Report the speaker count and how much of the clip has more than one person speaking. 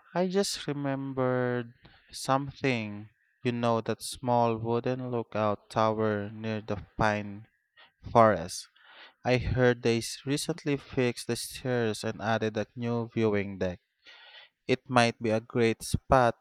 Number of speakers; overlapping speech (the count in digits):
1, no overlap